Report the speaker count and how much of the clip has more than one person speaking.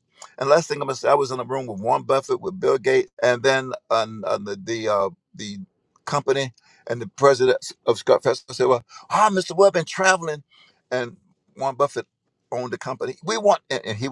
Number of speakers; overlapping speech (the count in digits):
1, no overlap